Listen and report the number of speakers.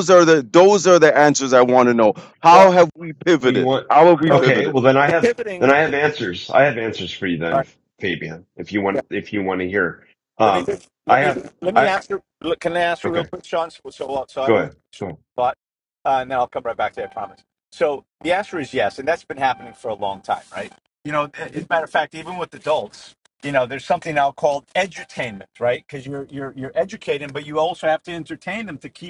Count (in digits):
3